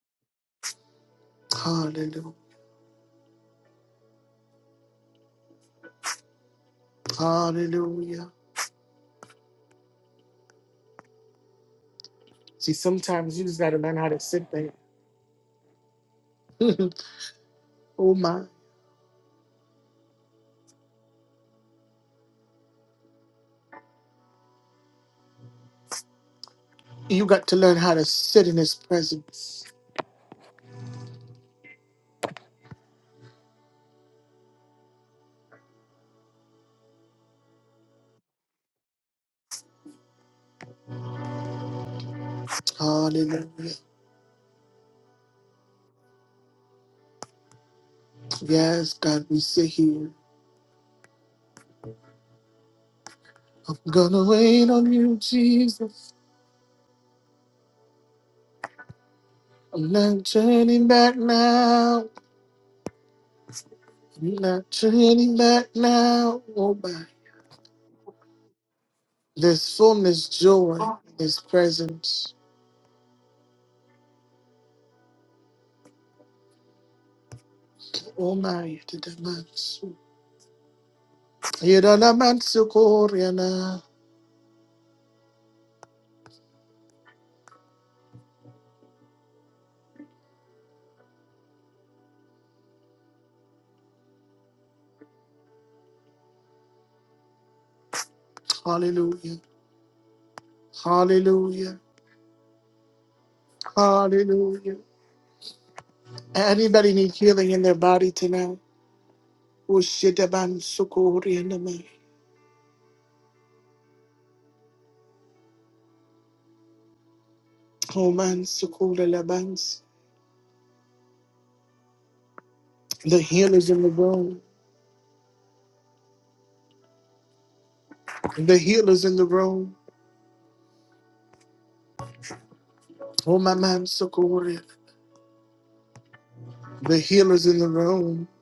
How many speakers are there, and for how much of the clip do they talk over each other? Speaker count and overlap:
one, no overlap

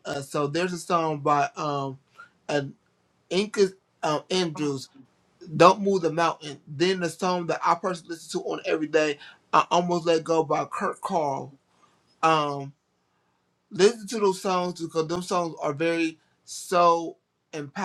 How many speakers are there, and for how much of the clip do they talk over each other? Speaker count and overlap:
one, no overlap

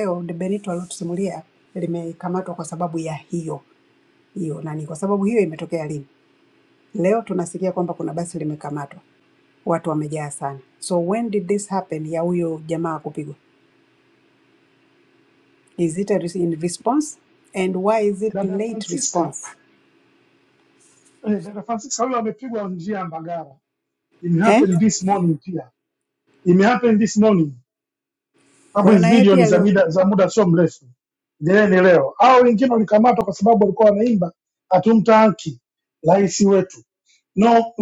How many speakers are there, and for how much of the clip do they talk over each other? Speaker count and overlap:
two, about 6%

